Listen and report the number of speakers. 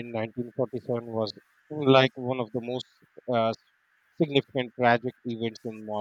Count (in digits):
1